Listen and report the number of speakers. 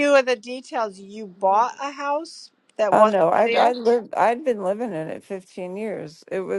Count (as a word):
two